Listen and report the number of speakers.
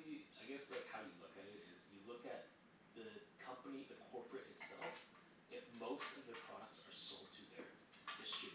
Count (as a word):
one